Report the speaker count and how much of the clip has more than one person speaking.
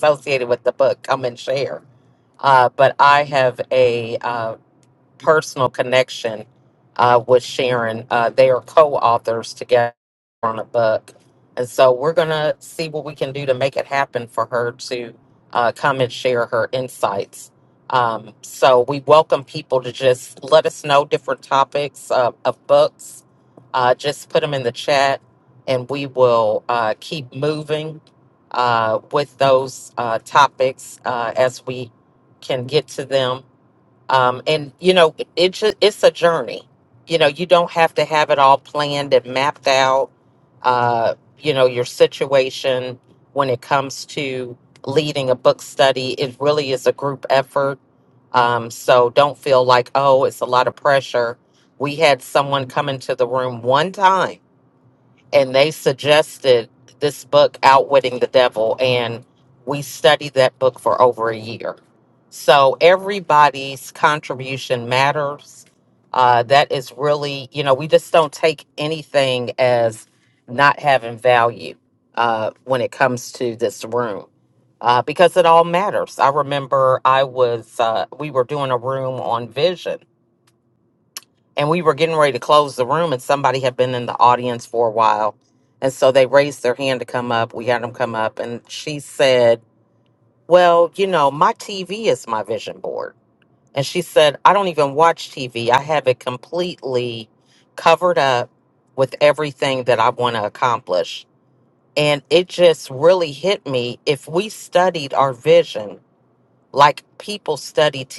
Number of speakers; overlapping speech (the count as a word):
one, no overlap